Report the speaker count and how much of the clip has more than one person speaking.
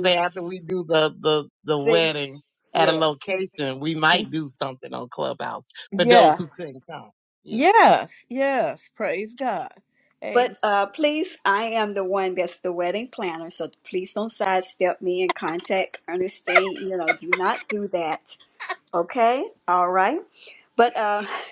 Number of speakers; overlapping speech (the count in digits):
3, about 6%